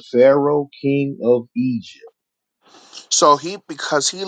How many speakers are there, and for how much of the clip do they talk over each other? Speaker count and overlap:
two, no overlap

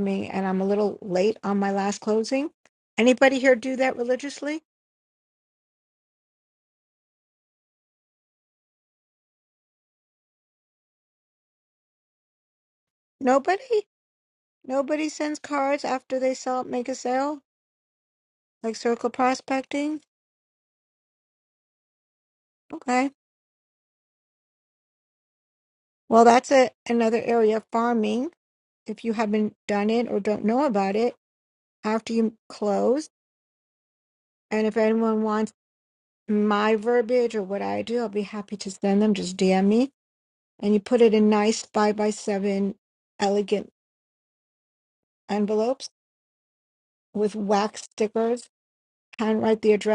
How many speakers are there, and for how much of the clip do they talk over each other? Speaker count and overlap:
one, no overlap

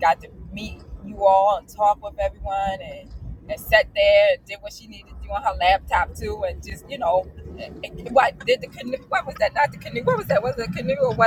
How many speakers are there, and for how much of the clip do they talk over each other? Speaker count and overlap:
one, no overlap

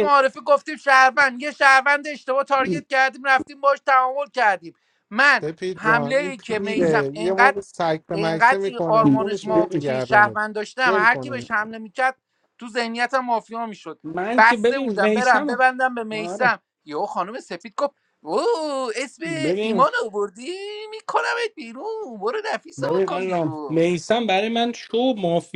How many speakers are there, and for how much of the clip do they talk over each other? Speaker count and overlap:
three, about 30%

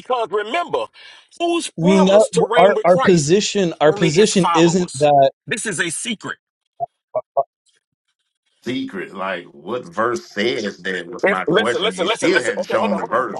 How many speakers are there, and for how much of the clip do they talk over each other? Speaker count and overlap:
three, about 36%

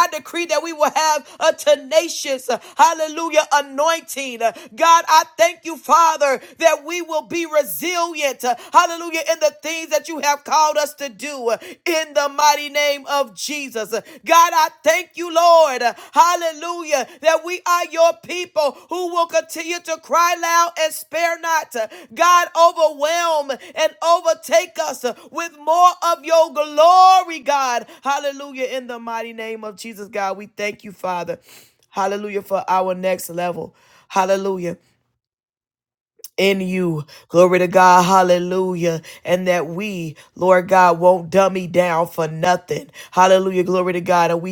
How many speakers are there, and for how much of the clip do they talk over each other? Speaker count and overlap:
one, no overlap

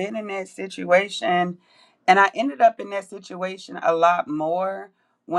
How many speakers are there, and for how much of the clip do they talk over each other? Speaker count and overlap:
one, no overlap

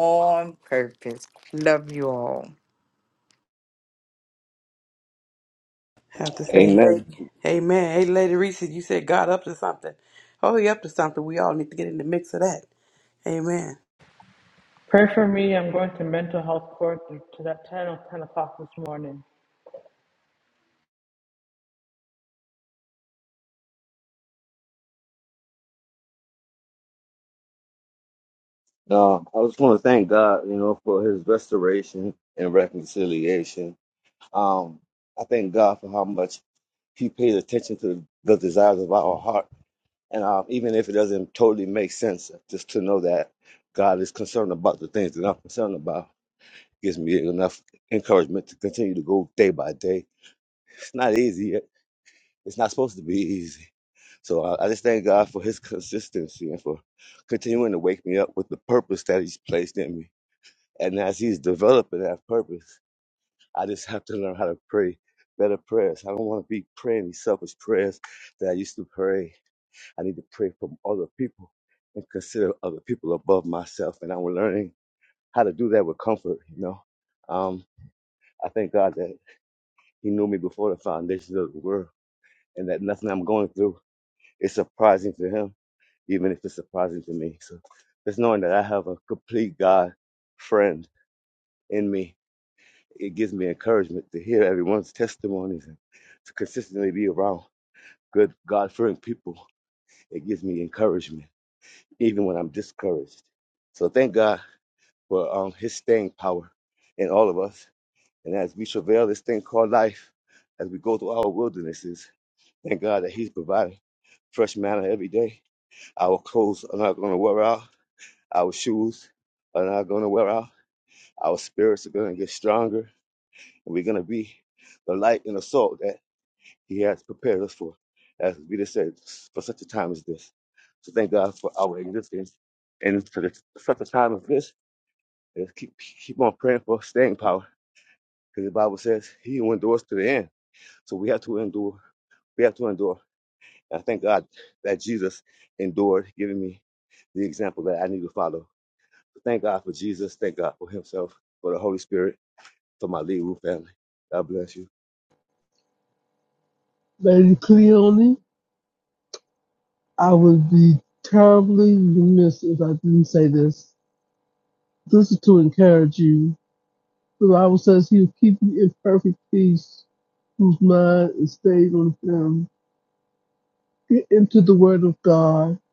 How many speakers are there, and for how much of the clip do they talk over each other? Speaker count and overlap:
five, under 1%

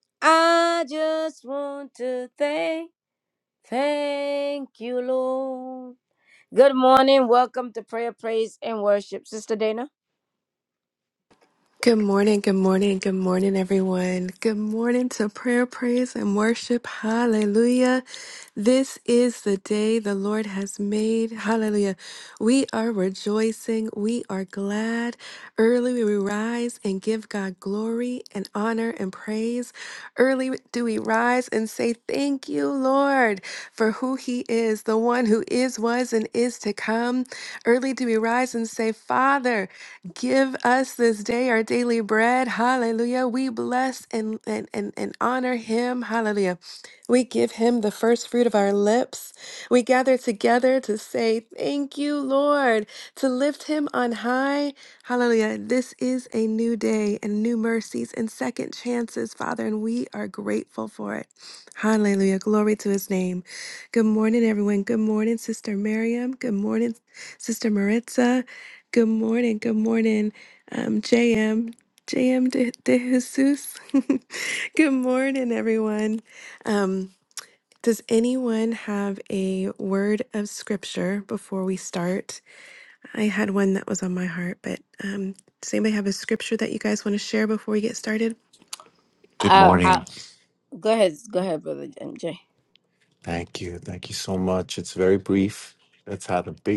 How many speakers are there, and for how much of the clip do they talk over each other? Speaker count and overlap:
three, about 1%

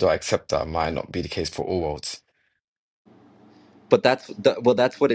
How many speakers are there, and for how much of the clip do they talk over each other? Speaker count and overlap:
two, no overlap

